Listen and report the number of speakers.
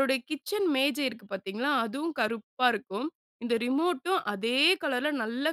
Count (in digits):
1